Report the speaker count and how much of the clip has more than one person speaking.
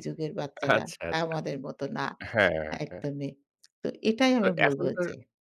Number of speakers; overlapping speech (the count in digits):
2, about 24%